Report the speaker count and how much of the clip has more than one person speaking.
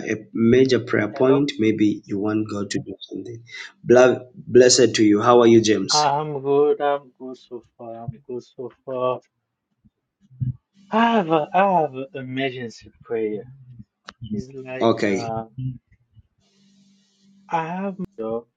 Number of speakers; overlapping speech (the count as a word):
two, about 5%